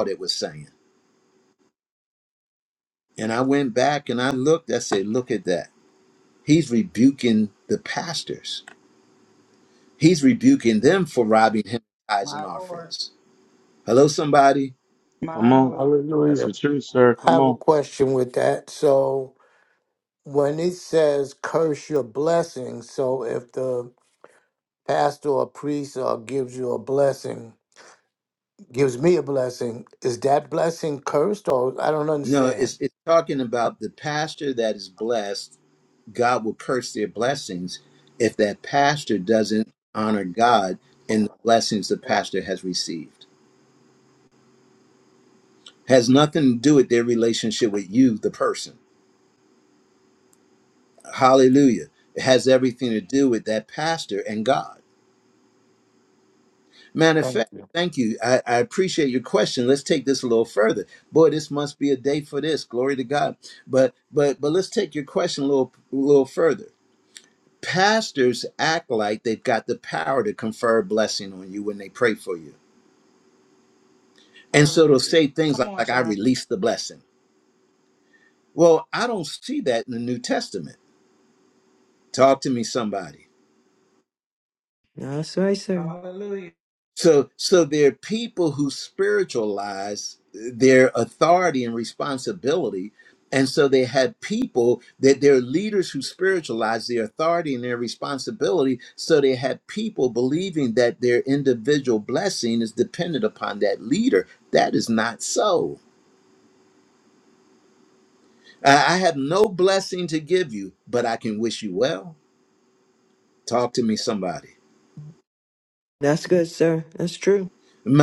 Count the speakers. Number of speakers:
five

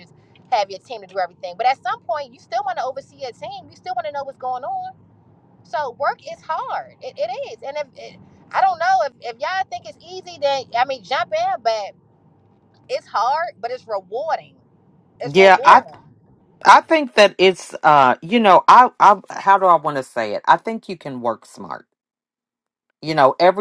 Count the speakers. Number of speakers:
two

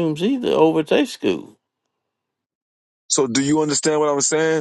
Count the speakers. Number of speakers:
two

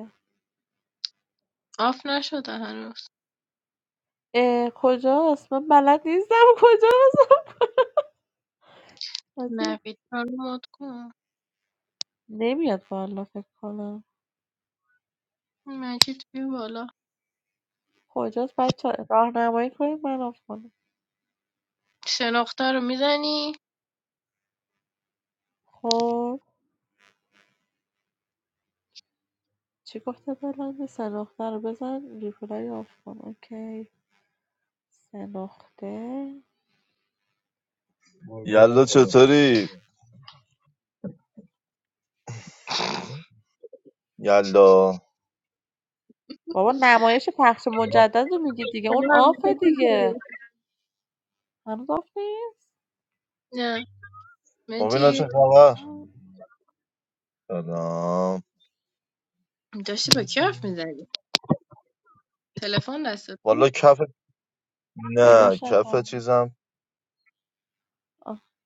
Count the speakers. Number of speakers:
three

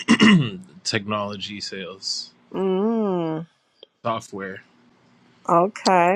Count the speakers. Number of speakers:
two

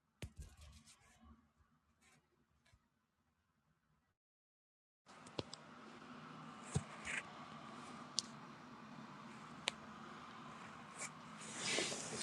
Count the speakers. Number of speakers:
zero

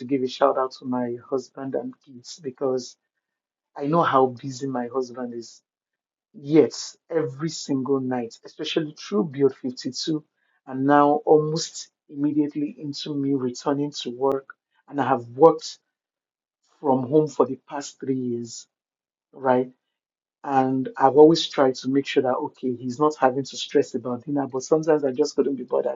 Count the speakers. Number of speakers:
one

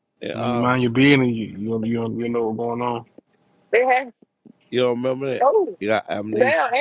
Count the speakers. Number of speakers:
three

